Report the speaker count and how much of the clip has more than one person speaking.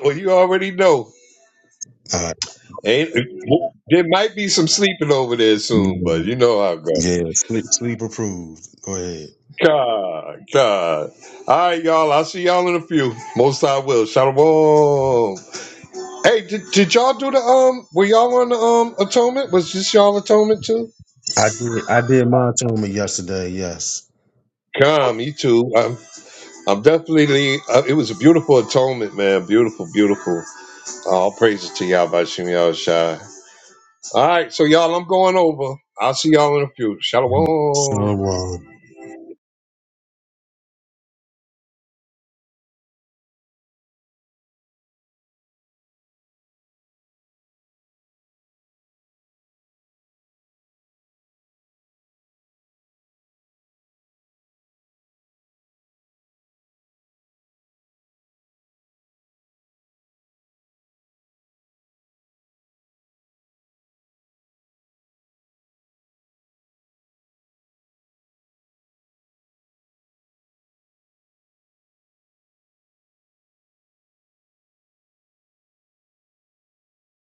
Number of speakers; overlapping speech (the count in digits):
2, about 1%